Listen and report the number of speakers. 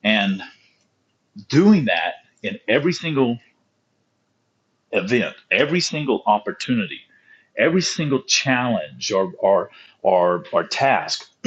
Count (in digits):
1